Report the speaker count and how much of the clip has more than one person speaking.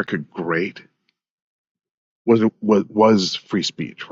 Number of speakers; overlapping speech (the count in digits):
1, no overlap